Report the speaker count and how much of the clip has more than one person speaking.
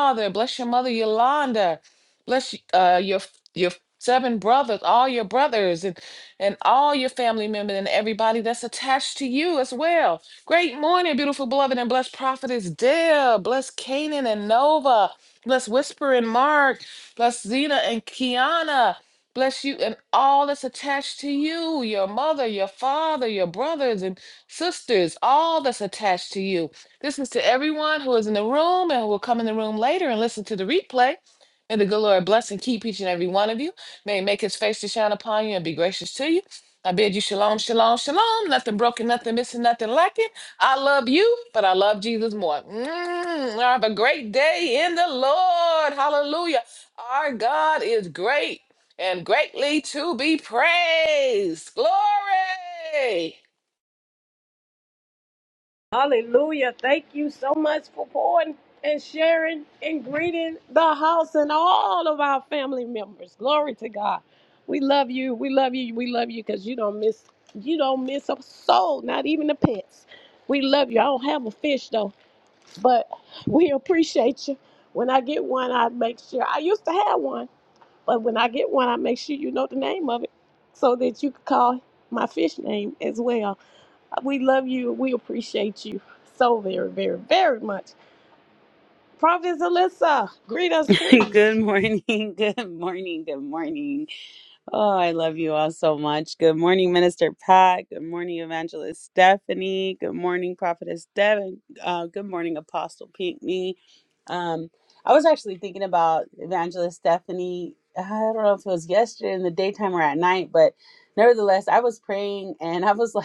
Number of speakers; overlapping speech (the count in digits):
3, under 1%